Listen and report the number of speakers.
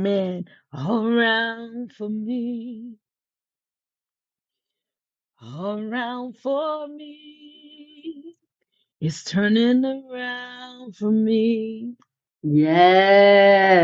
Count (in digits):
2